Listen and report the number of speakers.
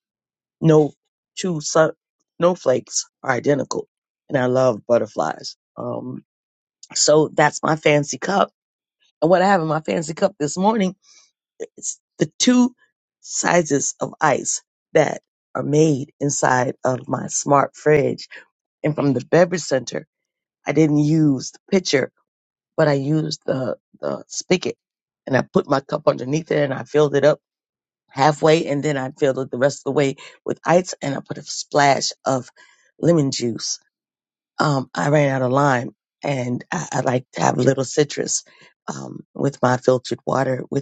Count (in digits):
1